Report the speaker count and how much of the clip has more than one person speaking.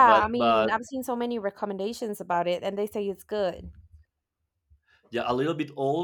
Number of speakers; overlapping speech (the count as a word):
two, about 13%